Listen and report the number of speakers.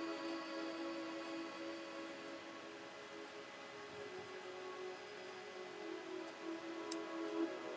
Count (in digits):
0